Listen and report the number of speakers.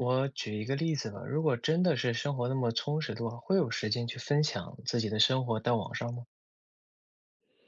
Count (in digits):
1